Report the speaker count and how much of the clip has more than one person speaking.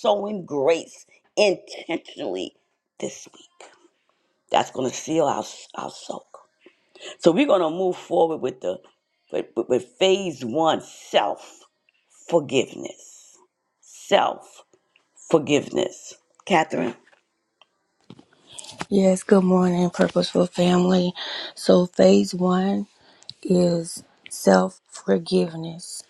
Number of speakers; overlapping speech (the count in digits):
2, no overlap